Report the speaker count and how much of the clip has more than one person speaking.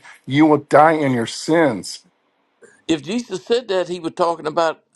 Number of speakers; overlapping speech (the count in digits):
2, no overlap